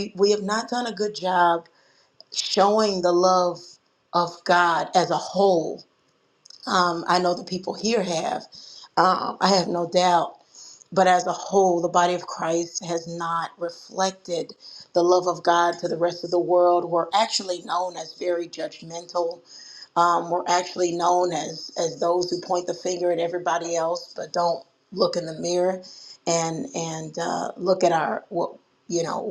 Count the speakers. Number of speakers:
one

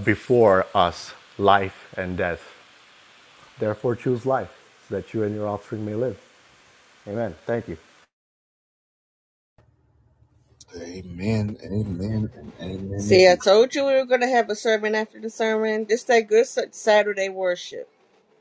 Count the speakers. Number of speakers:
three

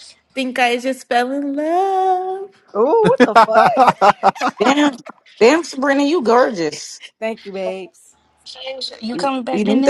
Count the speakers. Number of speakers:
four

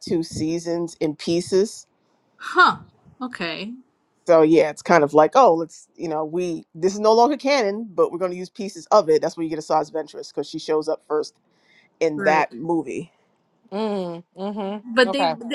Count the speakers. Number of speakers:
three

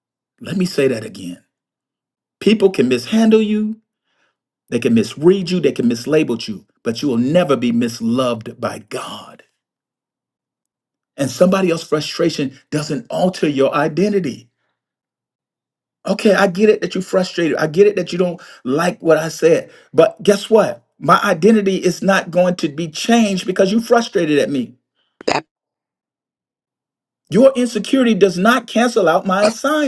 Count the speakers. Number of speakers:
one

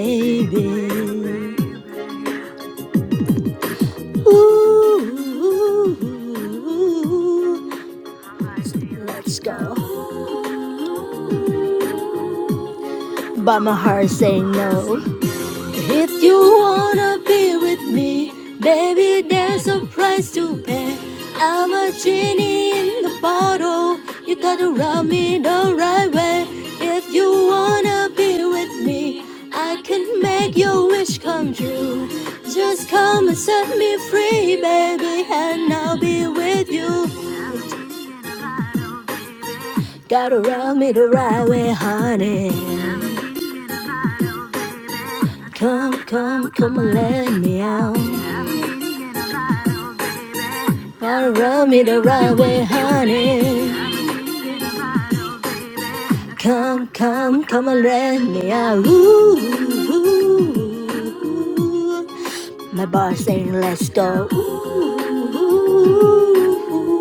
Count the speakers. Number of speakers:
one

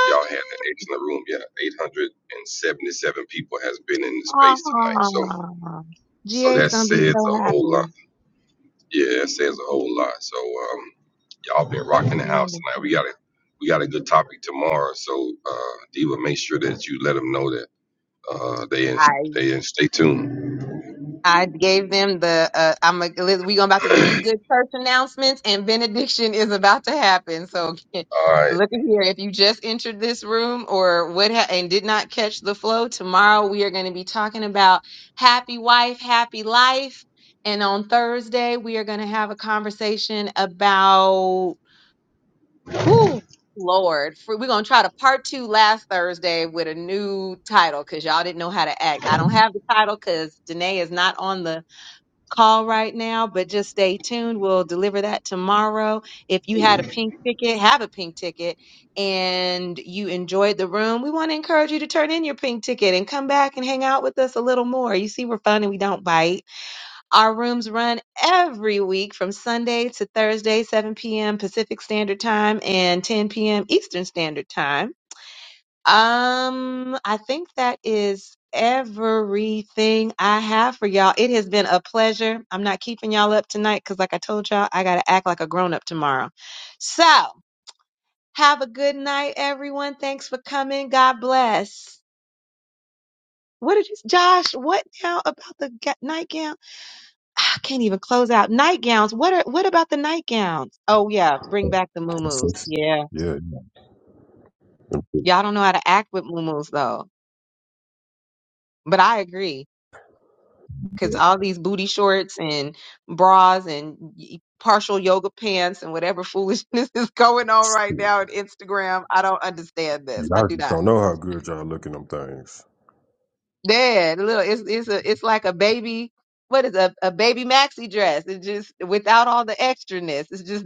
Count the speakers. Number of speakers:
three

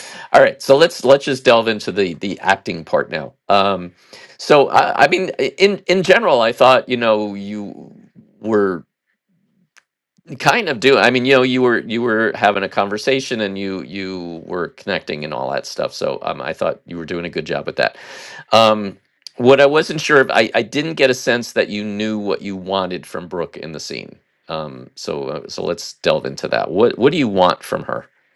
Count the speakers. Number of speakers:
one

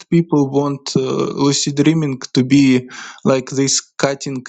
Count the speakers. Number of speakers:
one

